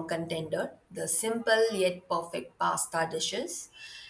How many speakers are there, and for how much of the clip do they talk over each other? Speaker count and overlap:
1, no overlap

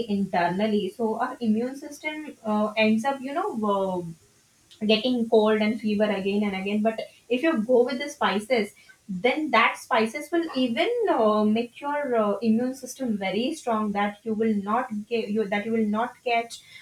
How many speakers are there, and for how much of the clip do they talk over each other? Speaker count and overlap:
1, no overlap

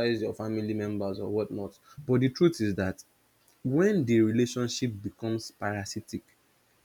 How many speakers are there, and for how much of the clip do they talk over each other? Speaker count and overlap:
1, no overlap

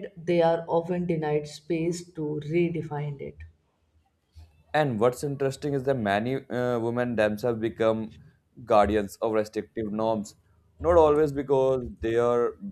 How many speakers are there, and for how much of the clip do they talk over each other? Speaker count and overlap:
2, no overlap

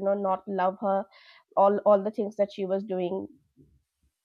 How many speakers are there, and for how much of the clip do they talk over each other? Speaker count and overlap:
1, no overlap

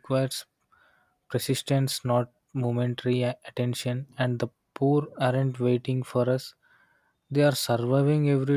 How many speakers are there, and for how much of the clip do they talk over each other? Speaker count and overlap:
1, no overlap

